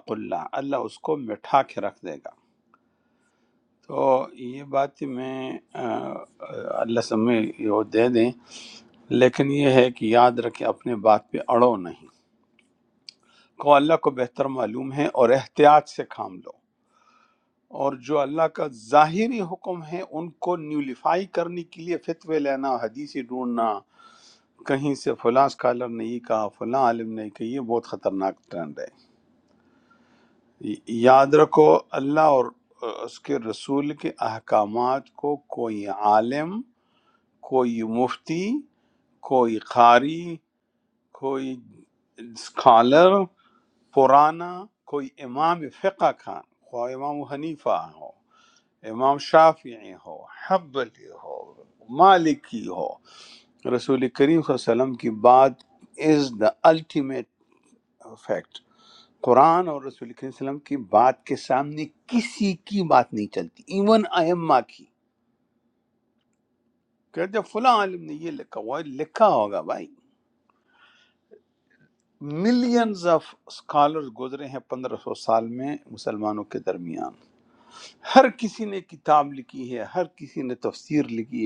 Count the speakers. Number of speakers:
1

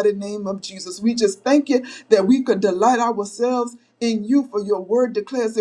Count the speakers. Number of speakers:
1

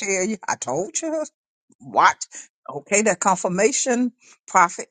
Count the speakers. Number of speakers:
1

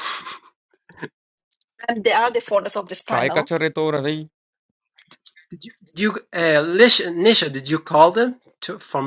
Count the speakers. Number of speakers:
3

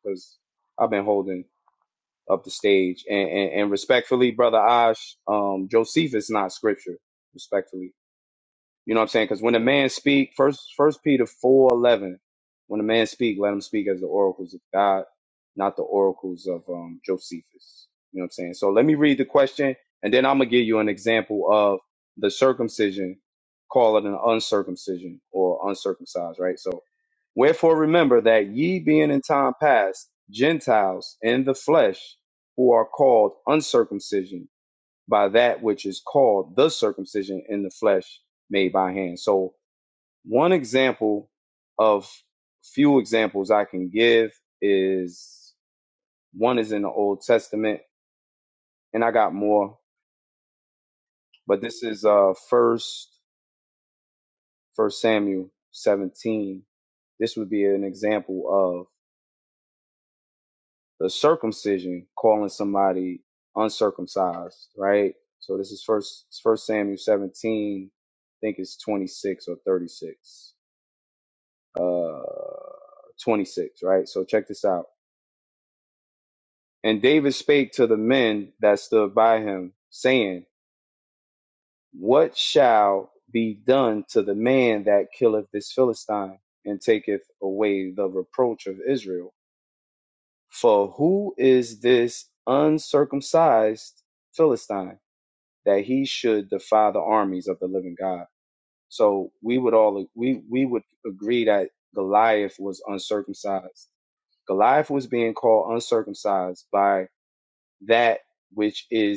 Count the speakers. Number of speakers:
1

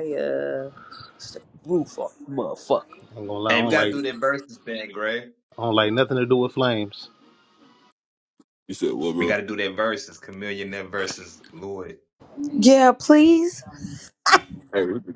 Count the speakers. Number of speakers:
4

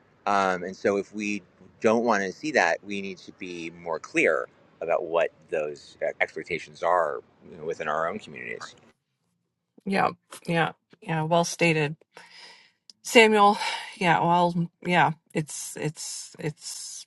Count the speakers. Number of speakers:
2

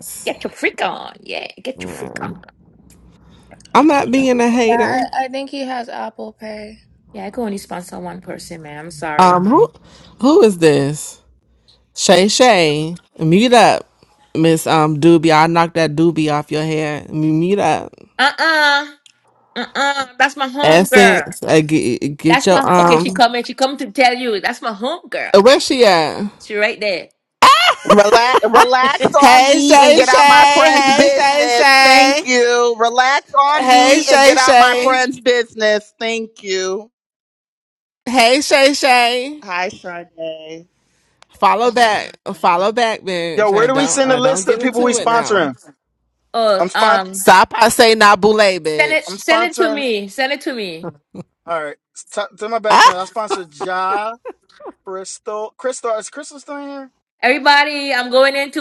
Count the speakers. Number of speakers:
5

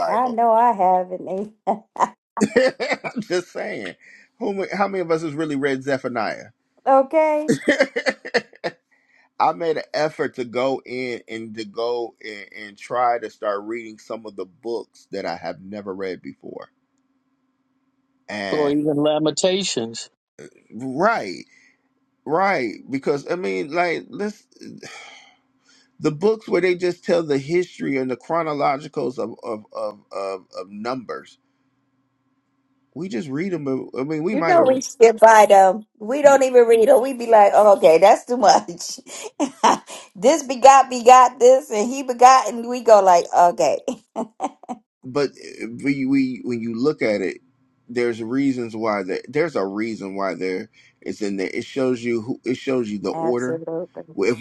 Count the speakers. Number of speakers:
3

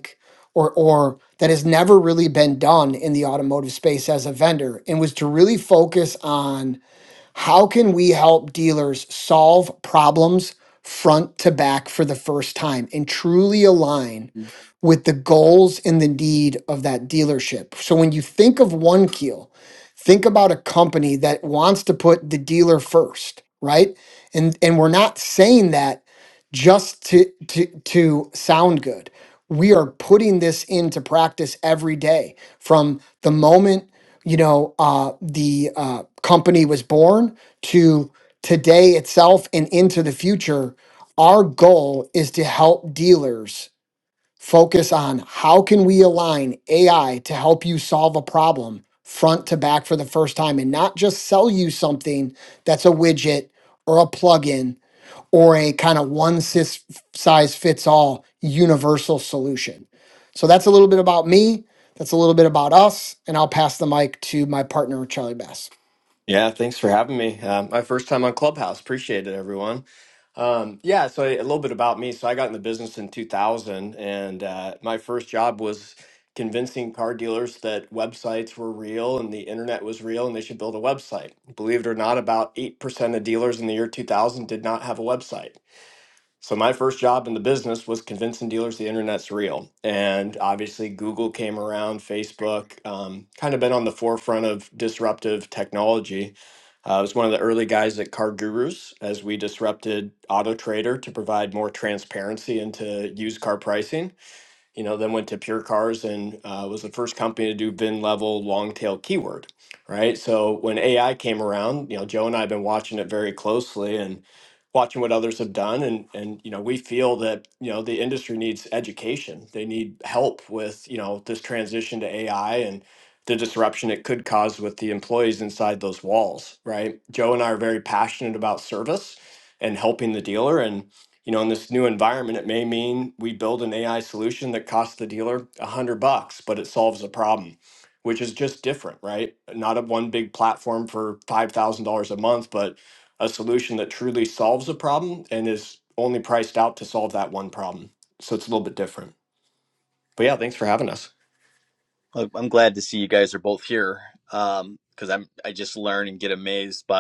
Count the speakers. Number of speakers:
3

